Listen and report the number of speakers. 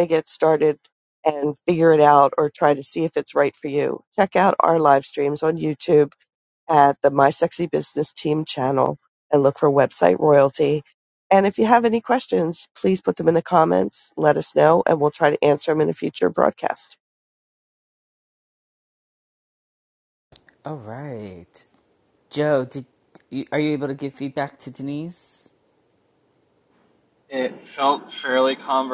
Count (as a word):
three